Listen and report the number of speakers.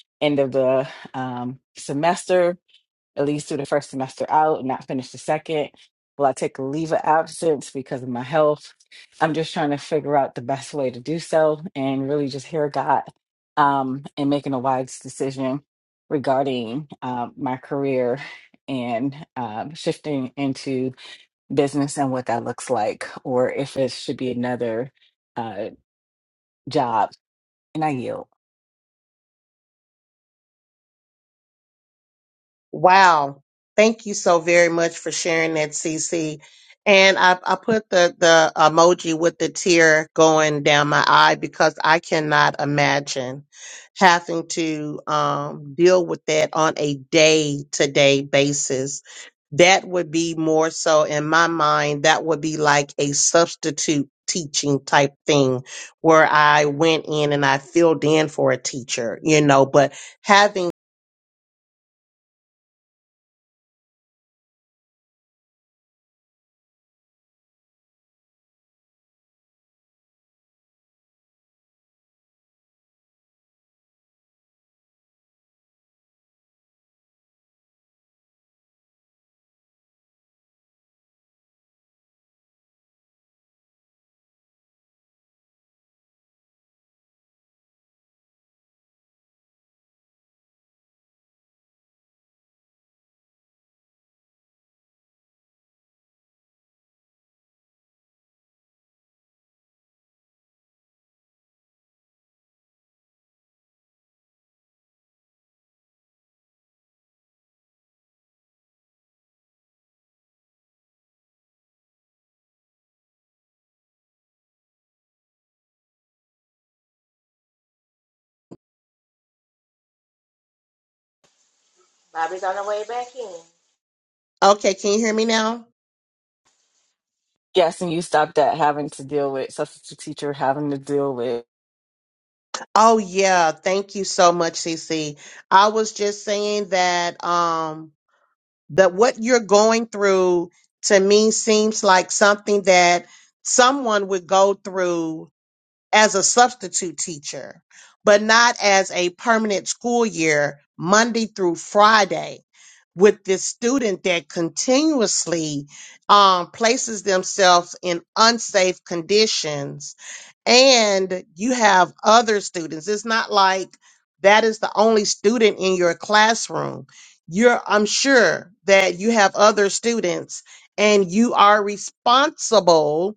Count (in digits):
3